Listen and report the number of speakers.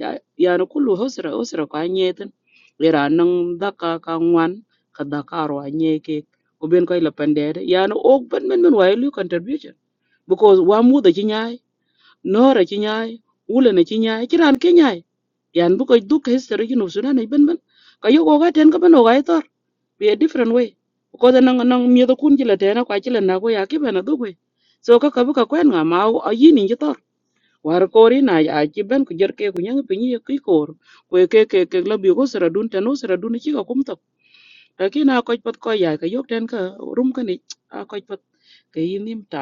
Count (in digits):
1